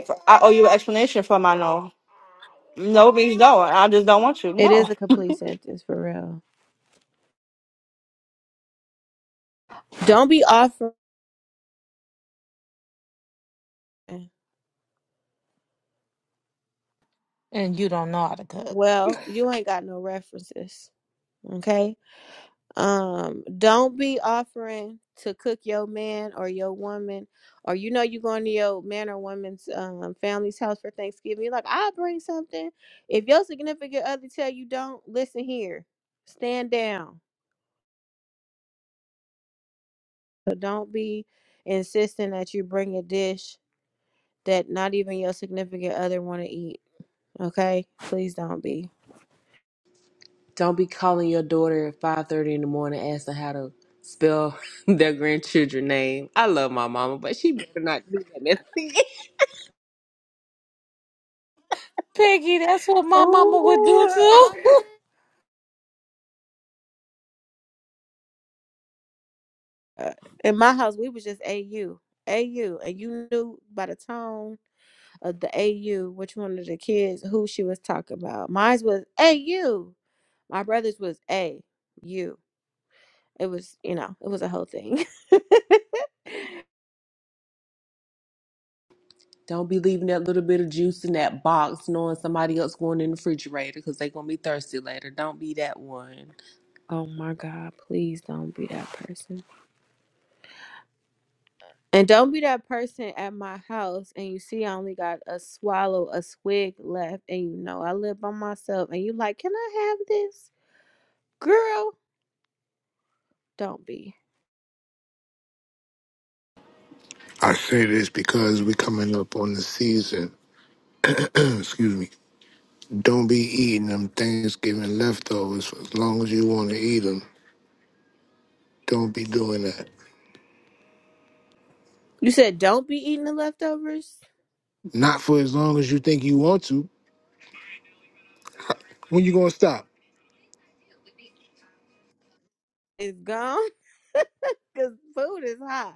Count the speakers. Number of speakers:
5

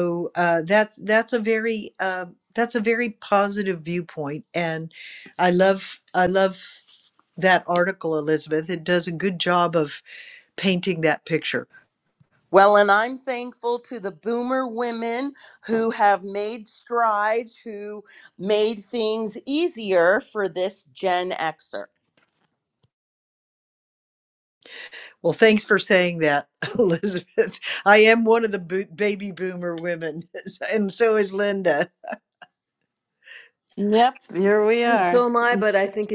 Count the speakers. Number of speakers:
4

